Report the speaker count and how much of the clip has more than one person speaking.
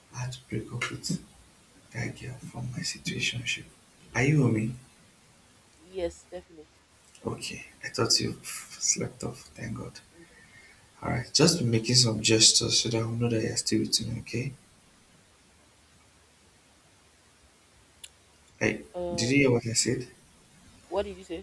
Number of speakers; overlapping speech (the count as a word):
two, about 2%